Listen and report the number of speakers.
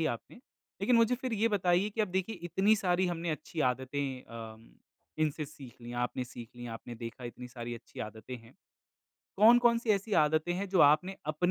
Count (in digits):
1